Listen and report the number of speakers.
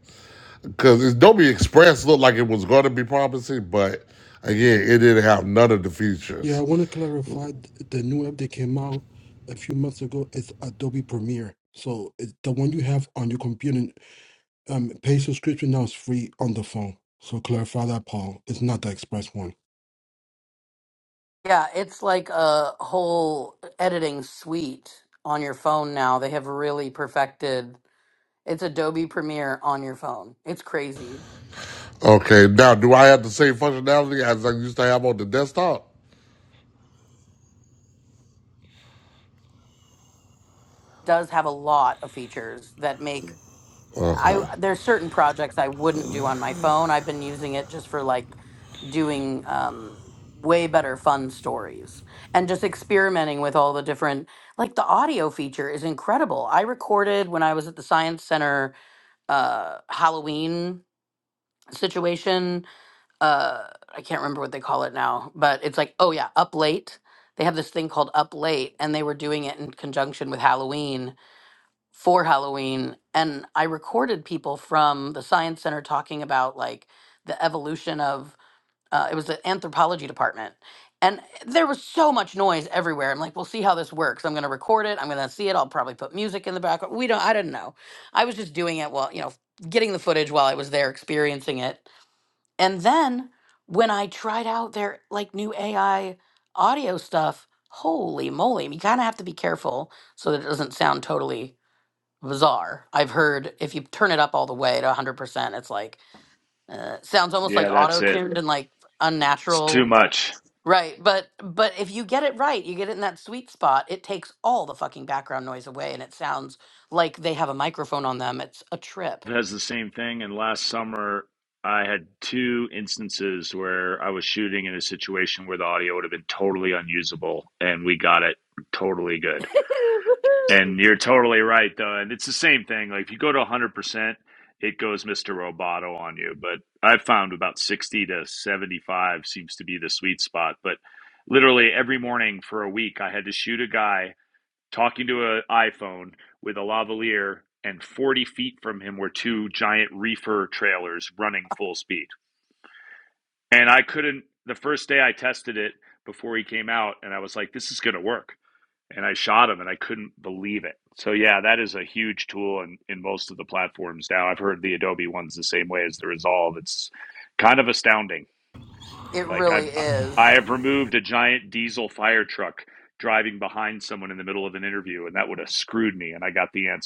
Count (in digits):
4